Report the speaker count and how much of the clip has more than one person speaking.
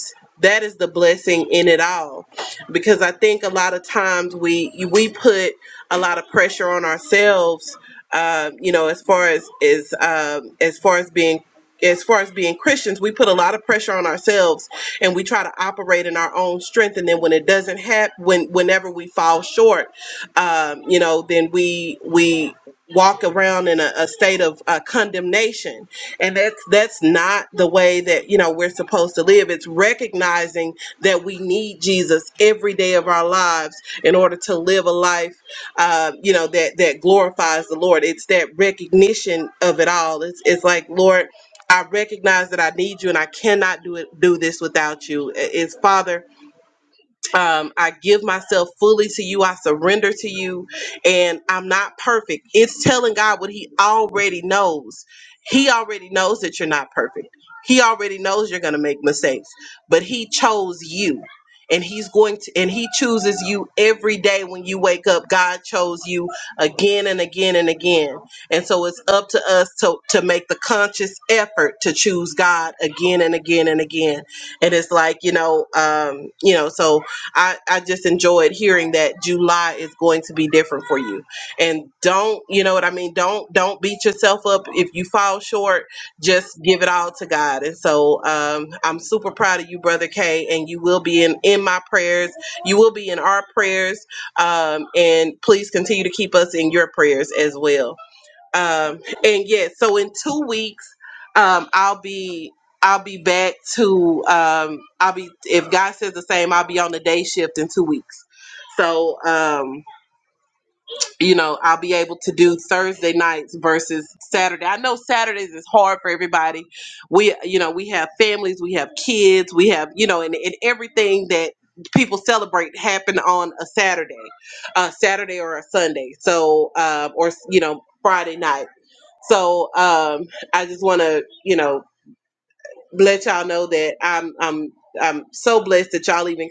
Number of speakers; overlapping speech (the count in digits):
1, no overlap